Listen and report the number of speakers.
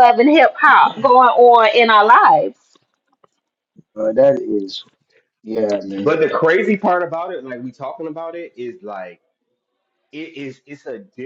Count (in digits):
3